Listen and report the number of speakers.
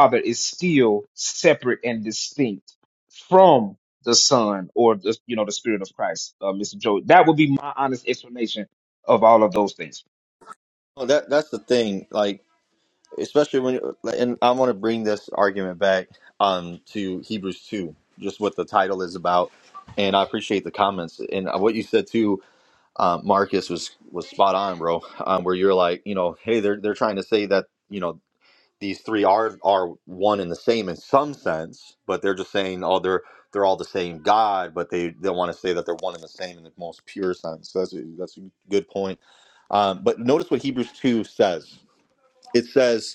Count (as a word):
two